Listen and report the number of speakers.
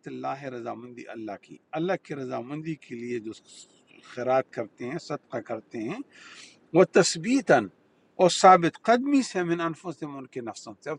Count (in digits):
1